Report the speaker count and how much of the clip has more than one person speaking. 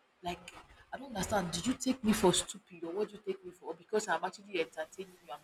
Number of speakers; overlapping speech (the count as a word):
one, no overlap